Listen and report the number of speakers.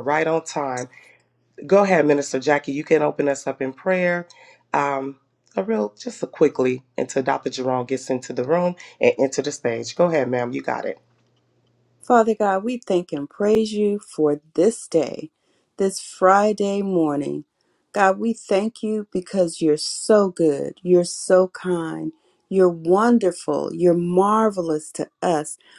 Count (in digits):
2